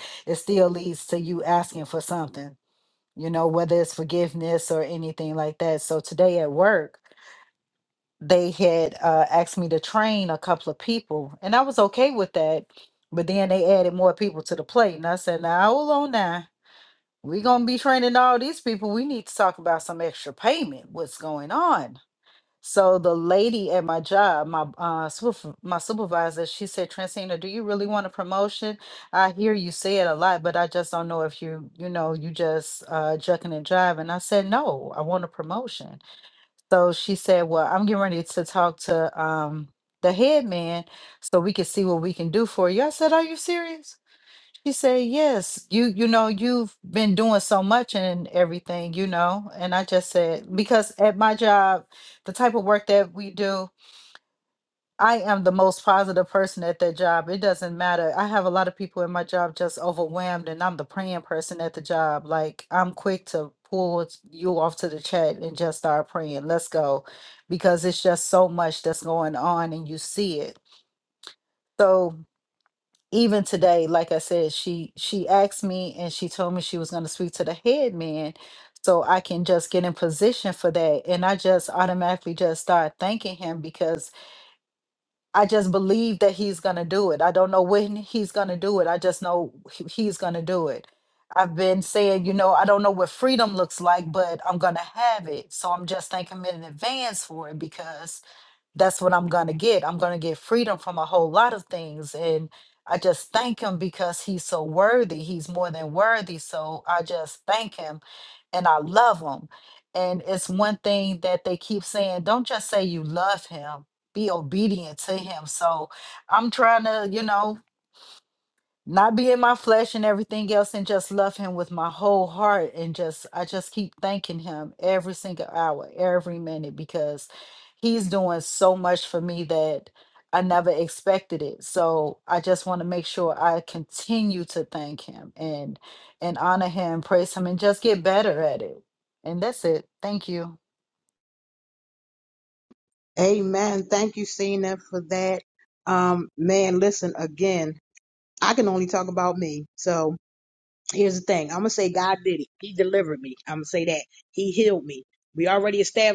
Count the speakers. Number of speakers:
2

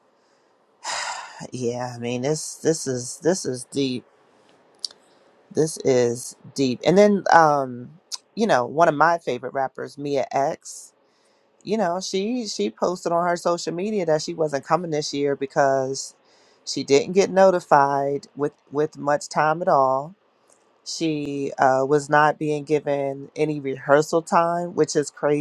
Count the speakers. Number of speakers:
1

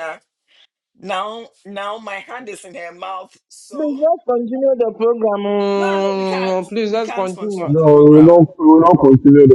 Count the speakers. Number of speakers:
3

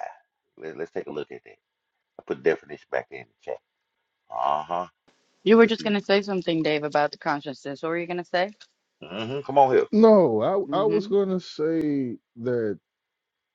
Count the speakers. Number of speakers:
3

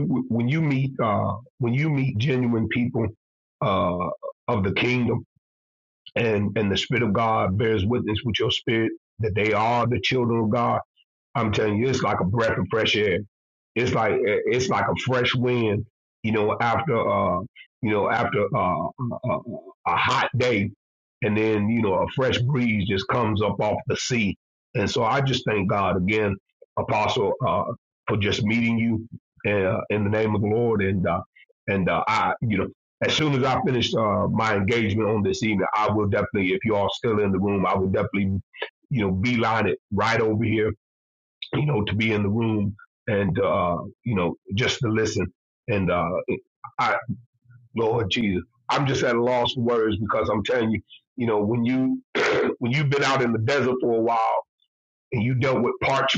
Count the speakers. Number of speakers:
1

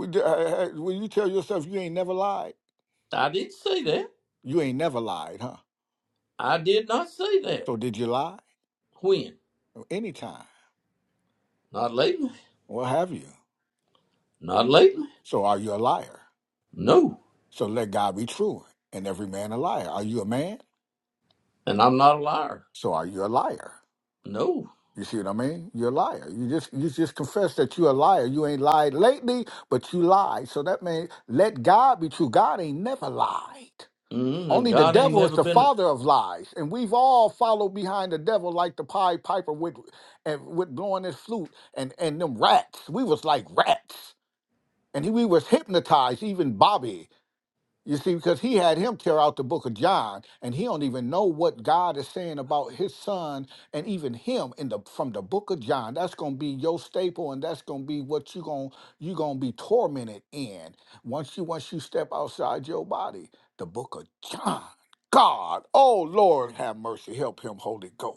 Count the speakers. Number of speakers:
2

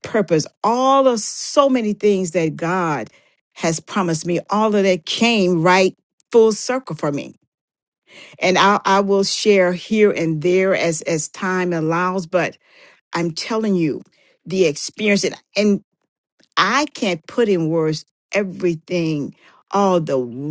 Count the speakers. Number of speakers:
1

